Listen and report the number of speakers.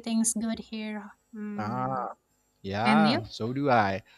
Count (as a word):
two